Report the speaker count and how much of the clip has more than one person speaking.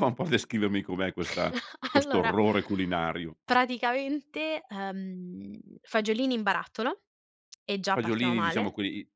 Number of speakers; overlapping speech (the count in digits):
2, about 13%